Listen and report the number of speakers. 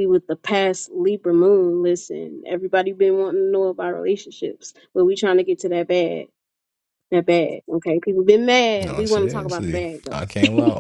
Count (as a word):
two